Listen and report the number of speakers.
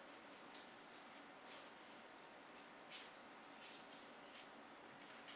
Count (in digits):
0